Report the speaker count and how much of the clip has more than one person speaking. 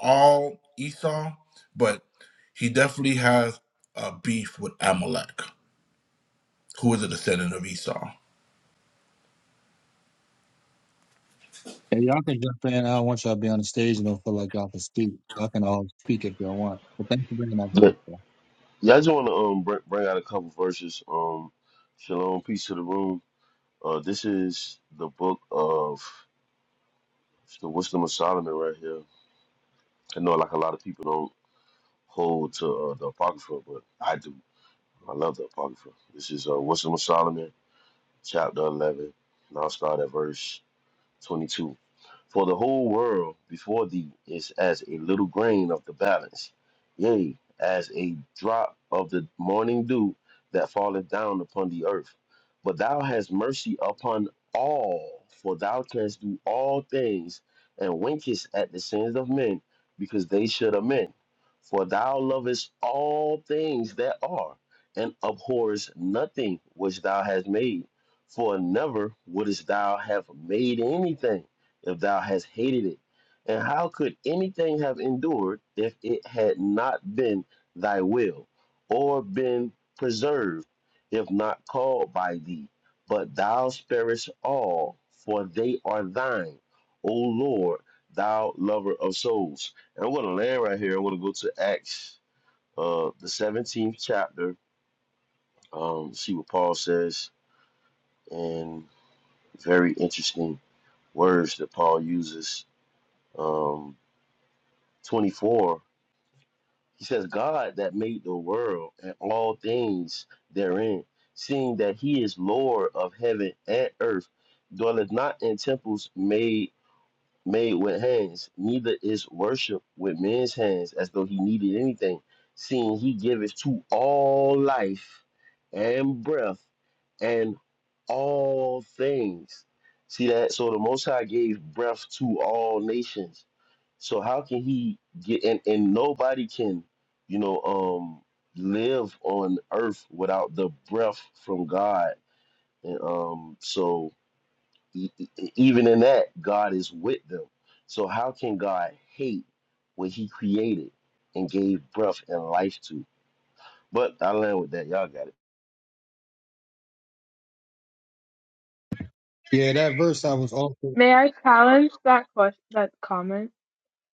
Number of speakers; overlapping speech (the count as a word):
four, under 1%